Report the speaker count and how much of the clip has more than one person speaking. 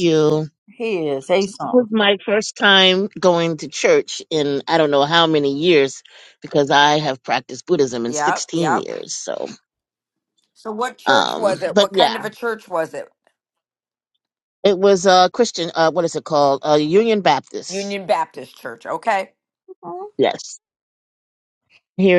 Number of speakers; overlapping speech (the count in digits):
3, about 9%